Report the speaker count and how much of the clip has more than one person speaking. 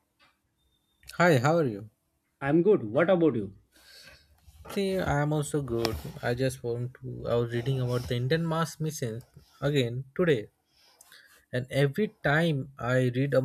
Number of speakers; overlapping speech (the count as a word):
two, no overlap